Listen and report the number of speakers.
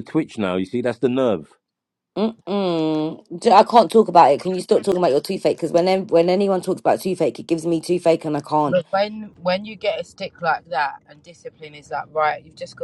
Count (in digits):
3